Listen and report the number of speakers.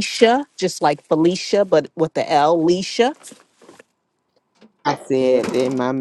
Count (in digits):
2